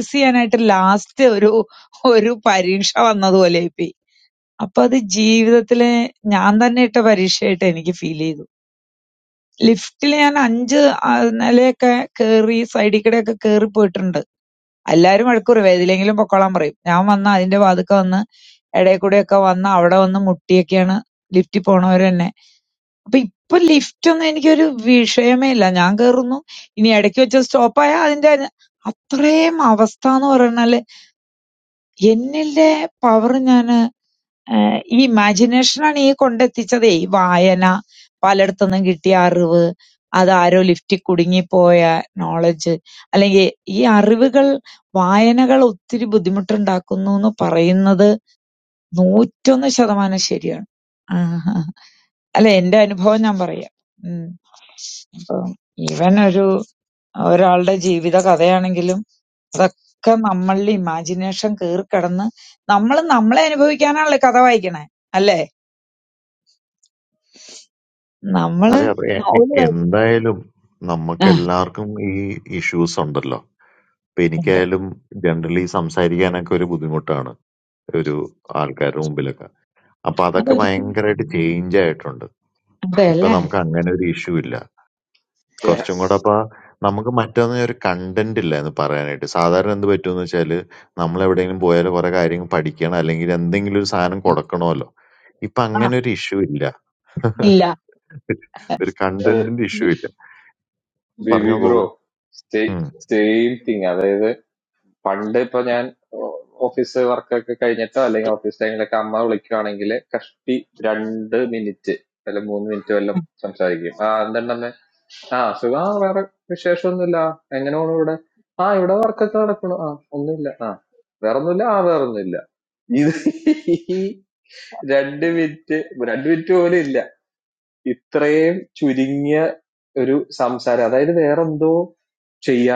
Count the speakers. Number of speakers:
three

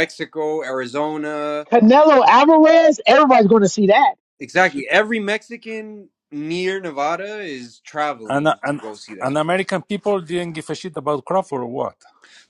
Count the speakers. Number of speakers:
three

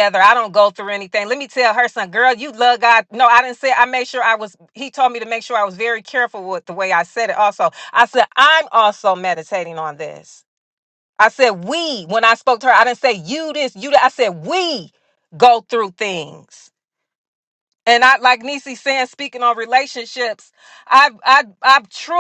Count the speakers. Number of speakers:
one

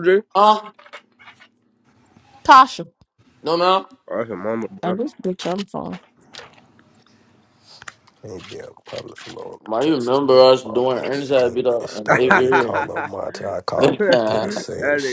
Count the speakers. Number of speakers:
four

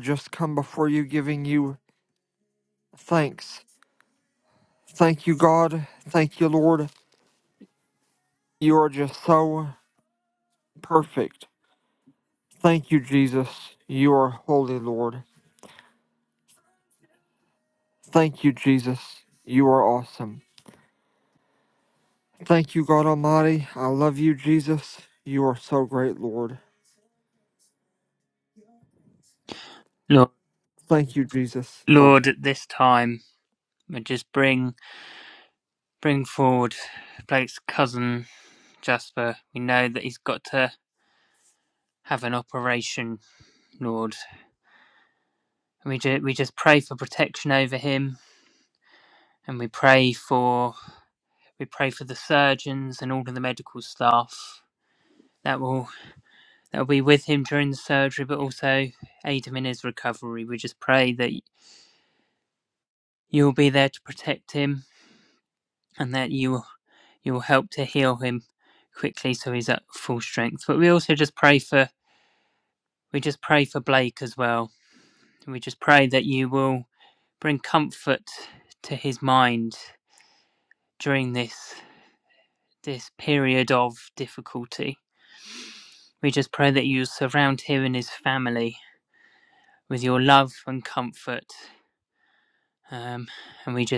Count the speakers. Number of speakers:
two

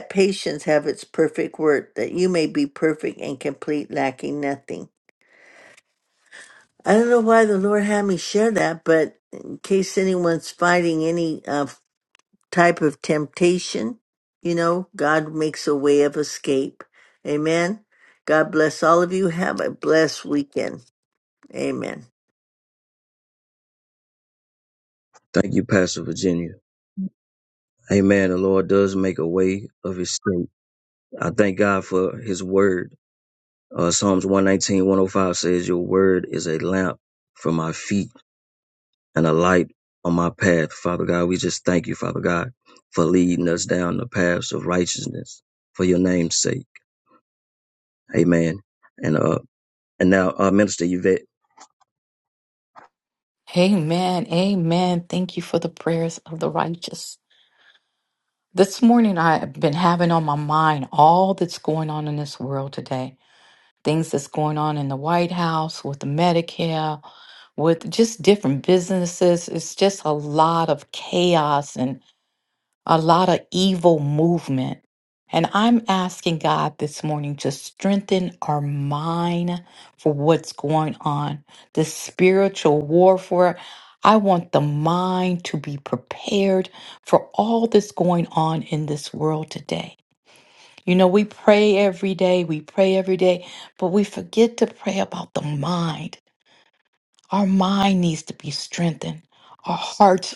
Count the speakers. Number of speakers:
three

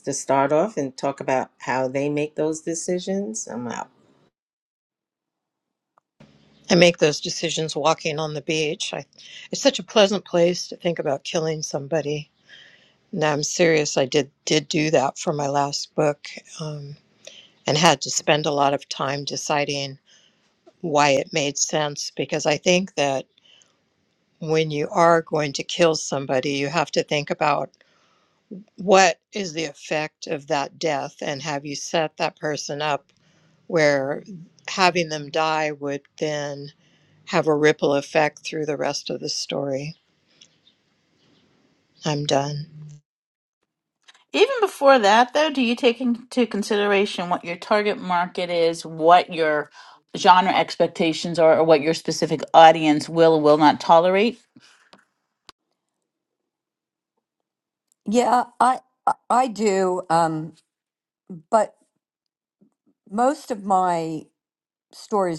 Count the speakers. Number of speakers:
four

